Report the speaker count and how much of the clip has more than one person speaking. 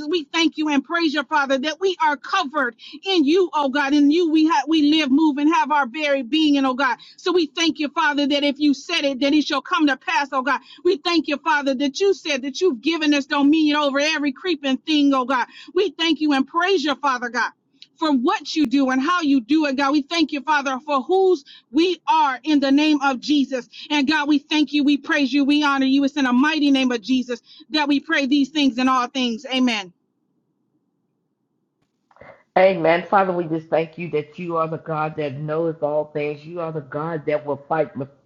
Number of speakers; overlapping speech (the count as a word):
two, no overlap